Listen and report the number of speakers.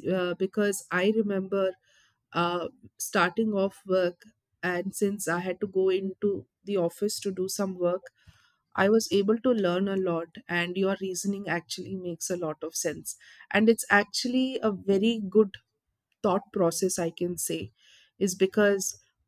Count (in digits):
1